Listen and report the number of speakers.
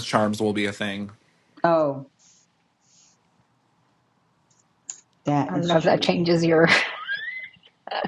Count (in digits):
3